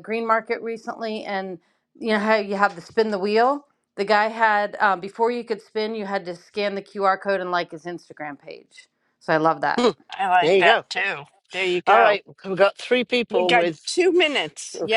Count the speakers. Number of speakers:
three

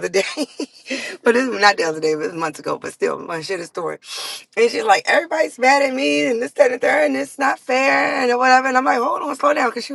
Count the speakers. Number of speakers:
one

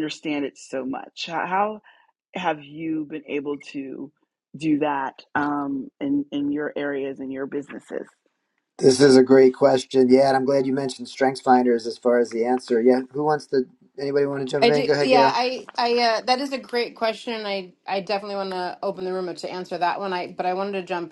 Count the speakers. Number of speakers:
three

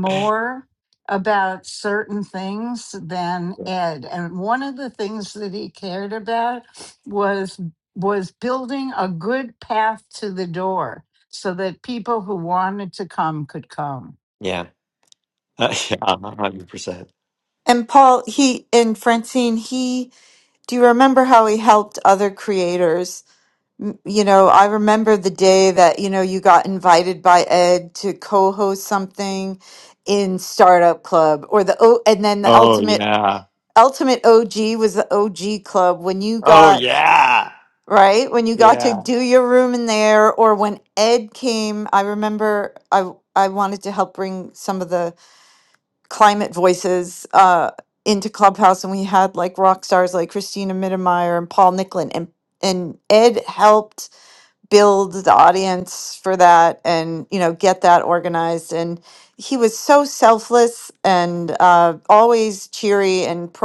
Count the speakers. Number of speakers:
three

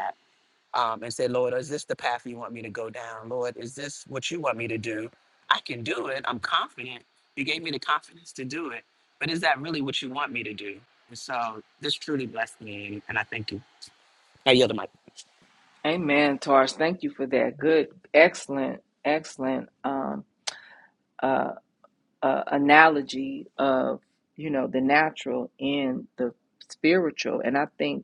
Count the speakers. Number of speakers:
two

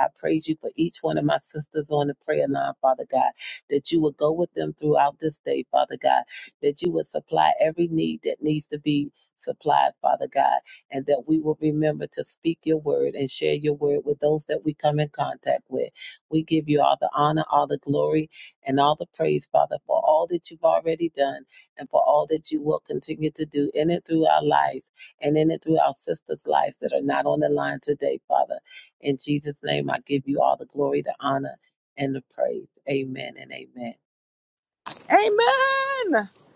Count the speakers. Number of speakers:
two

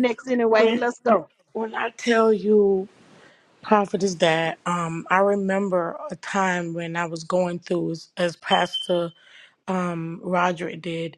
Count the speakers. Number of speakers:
two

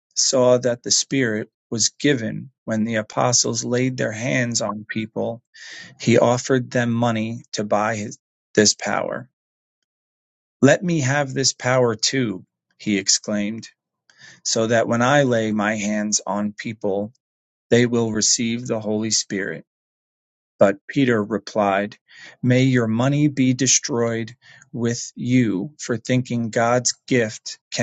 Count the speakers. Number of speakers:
one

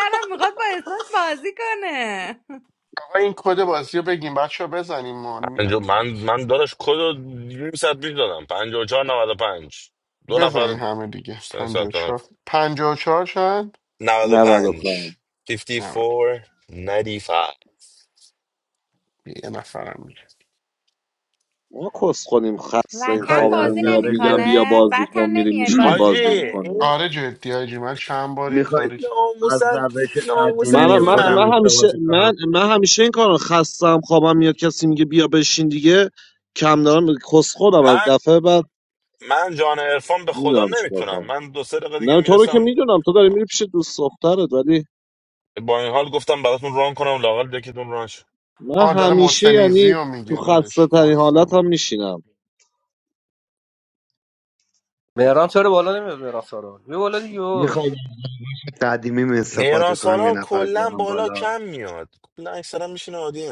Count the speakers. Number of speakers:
six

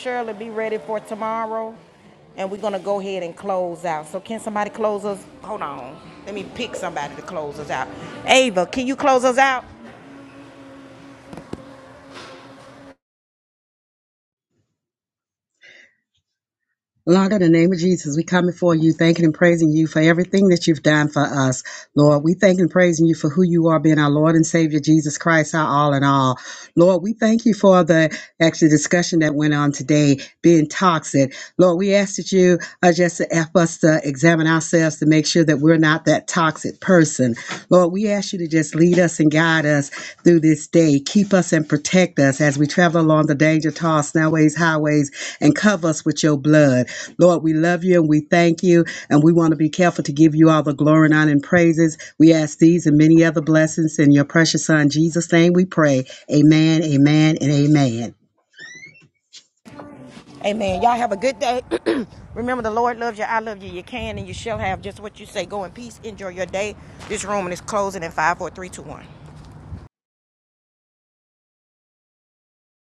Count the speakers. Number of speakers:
two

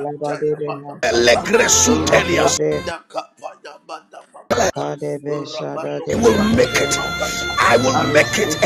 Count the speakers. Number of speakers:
three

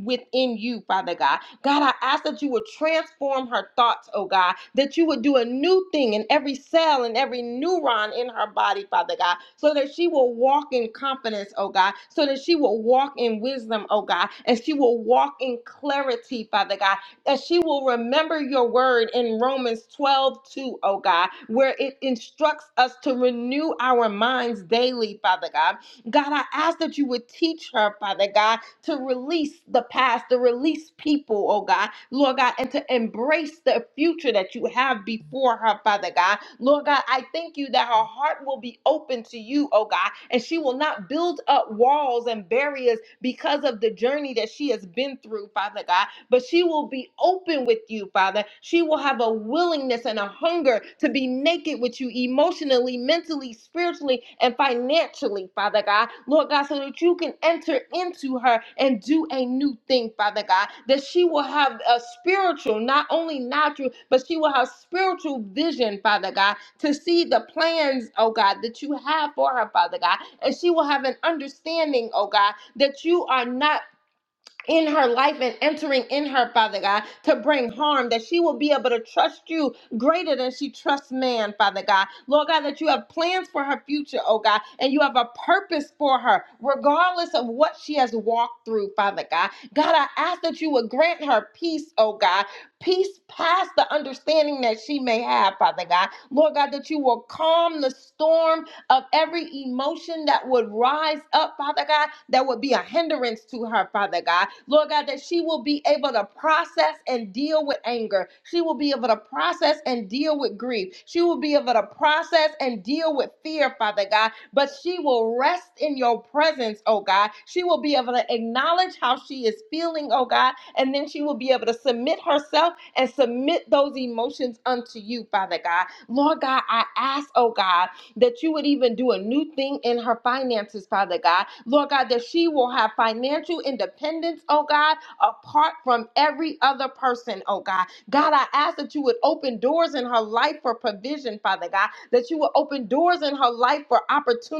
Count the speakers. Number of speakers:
one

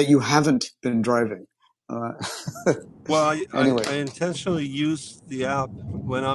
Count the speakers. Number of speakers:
two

